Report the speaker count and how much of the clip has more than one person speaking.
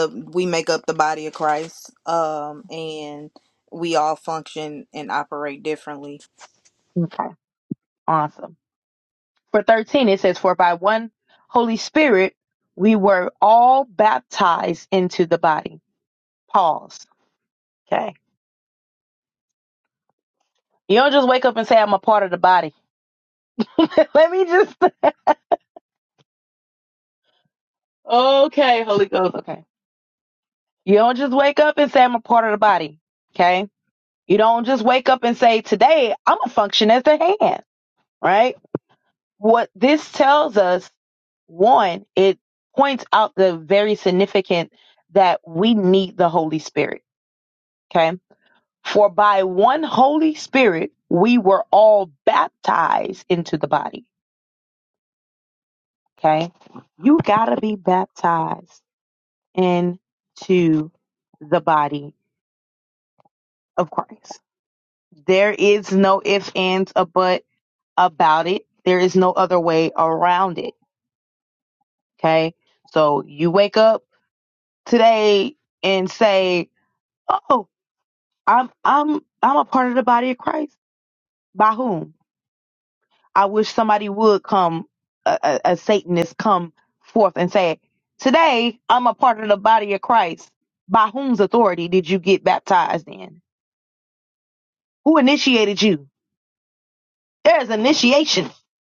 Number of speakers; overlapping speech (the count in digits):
2, no overlap